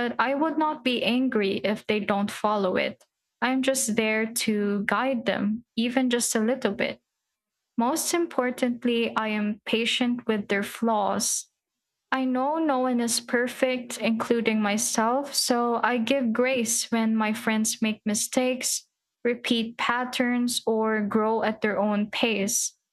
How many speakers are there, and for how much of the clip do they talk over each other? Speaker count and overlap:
1, no overlap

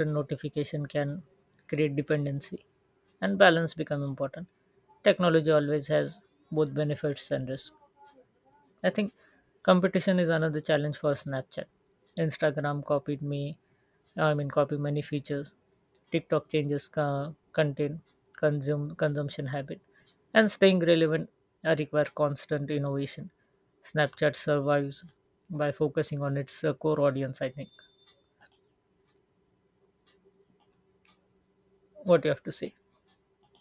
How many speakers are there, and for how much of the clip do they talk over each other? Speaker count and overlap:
1, no overlap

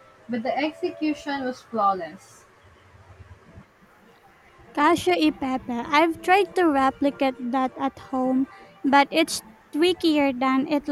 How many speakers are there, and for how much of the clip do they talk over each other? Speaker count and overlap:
2, no overlap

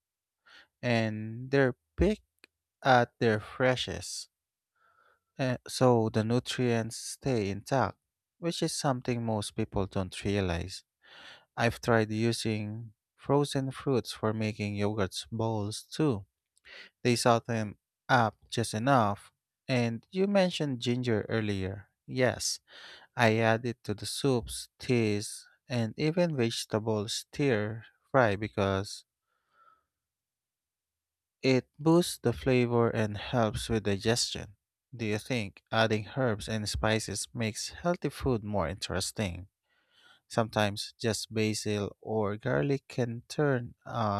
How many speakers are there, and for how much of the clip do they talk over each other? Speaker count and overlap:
1, no overlap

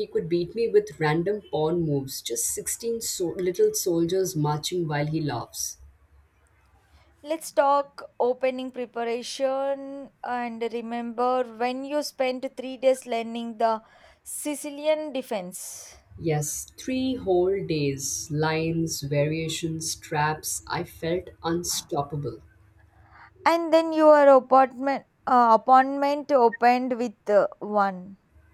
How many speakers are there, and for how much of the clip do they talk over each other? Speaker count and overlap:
2, no overlap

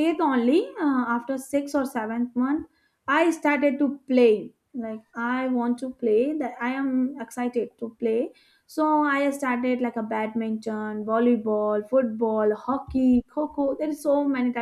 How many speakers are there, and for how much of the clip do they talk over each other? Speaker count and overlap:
1, no overlap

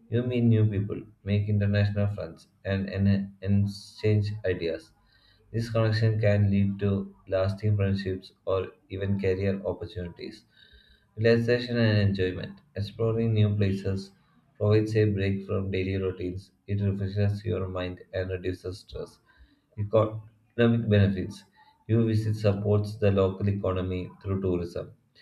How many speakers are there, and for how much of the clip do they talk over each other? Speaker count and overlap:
1, no overlap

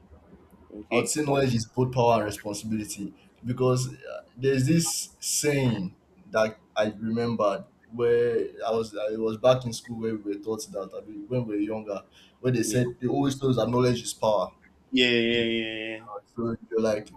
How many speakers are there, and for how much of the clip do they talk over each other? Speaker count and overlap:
2, about 2%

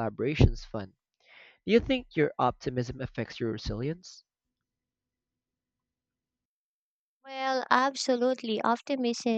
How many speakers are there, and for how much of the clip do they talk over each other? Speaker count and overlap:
2, no overlap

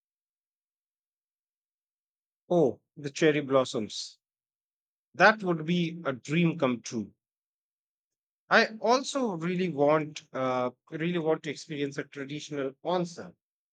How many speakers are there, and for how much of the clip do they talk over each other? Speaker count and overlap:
1, no overlap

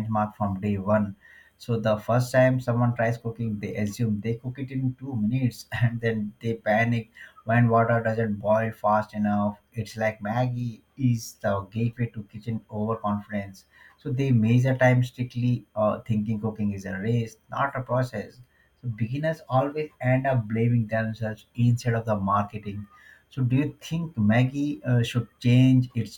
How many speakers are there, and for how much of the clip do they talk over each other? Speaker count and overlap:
1, no overlap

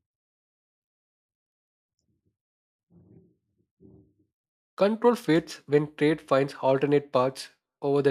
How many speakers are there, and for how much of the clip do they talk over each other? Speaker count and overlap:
1, no overlap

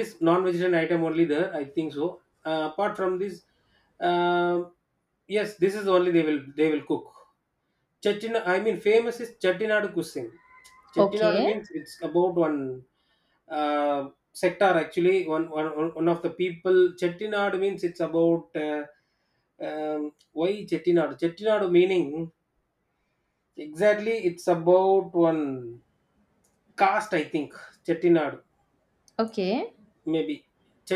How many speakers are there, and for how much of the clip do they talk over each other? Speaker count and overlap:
2, about 2%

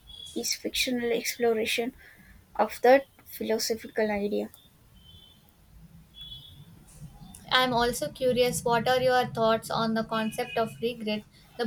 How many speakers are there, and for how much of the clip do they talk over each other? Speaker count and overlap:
2, no overlap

